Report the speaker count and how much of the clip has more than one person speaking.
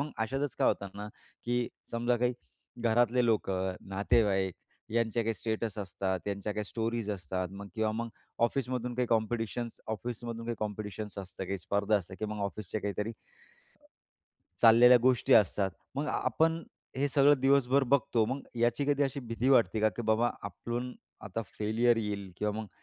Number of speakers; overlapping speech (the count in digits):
1, no overlap